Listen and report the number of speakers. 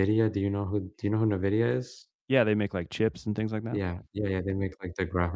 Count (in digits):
2